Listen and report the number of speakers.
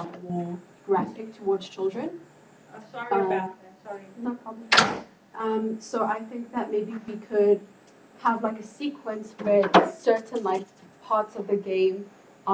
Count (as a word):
two